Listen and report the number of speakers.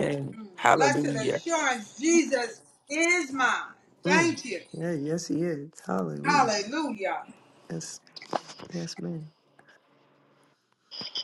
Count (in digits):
3